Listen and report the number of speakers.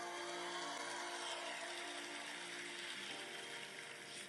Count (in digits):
0